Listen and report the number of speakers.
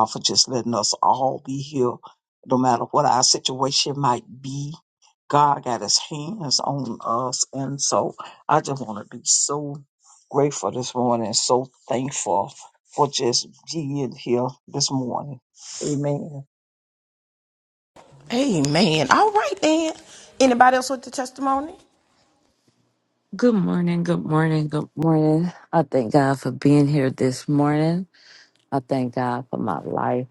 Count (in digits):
3